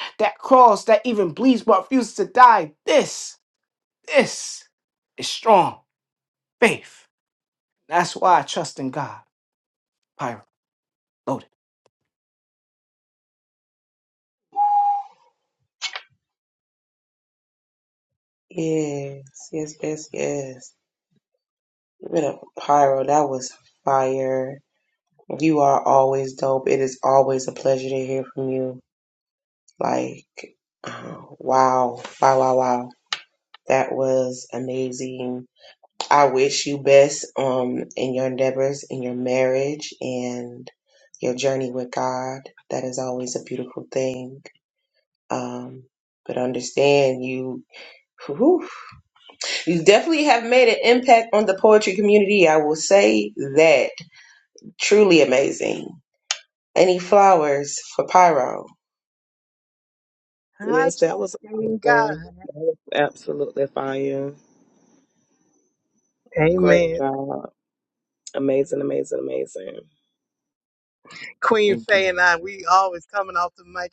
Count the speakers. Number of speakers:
4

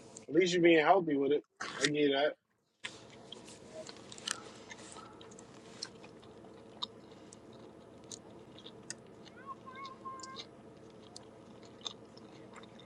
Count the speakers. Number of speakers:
1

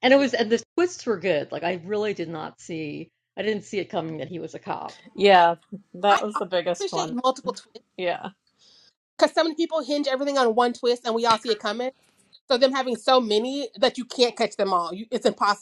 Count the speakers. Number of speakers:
3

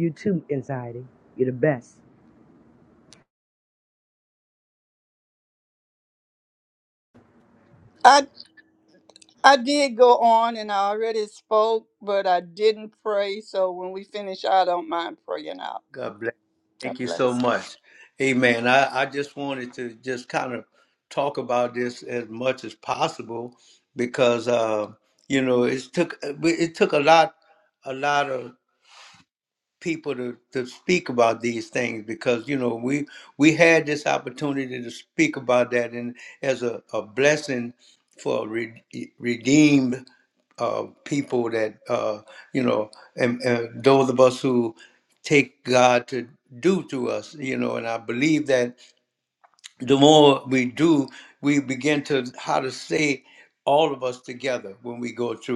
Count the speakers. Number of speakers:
3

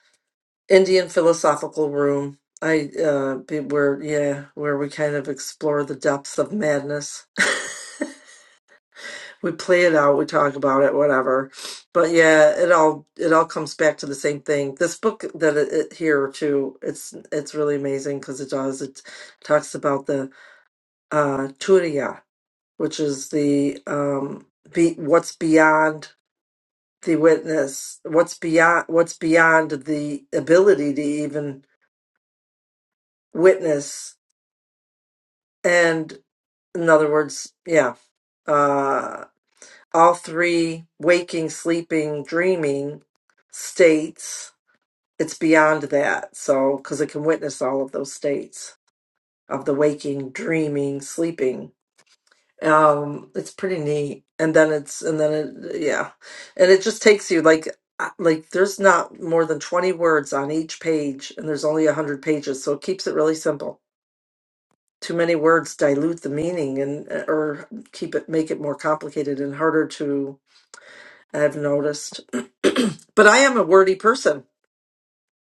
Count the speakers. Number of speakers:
1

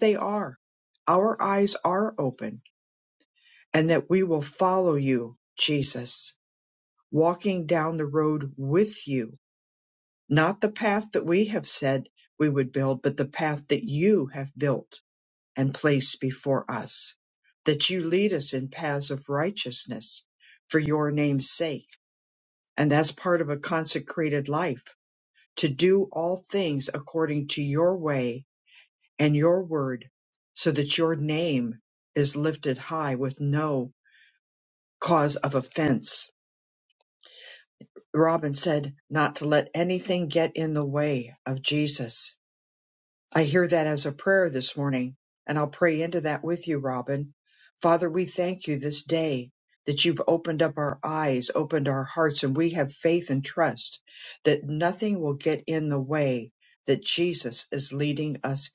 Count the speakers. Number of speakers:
1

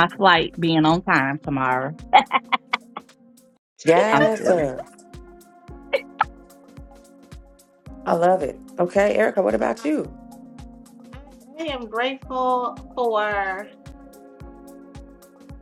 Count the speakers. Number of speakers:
3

